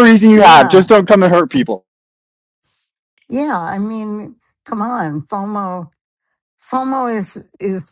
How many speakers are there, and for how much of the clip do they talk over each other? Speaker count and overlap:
2, about 7%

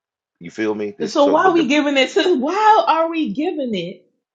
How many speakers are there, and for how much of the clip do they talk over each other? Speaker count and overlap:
2, about 16%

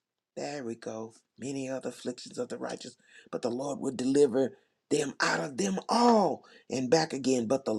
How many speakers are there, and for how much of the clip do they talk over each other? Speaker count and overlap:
1, no overlap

